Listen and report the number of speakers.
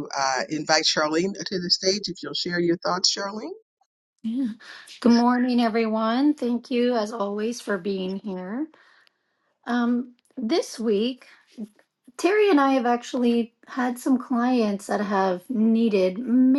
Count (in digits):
2